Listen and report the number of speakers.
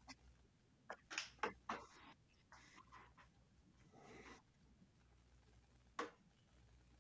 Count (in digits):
0